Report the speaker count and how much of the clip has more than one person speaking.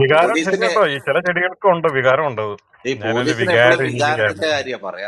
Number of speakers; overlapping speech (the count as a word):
two, about 44%